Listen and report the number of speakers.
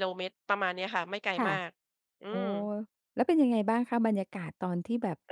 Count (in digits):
2